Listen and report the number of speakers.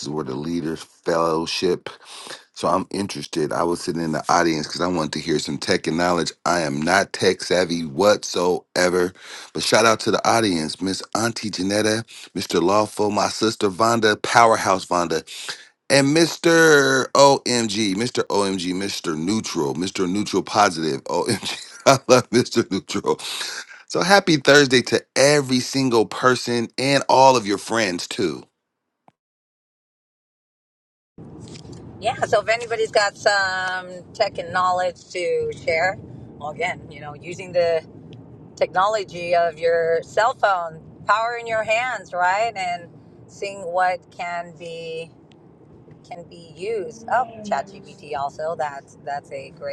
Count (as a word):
two